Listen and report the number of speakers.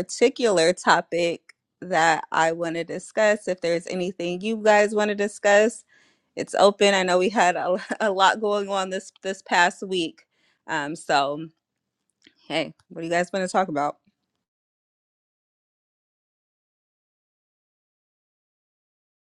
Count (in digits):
1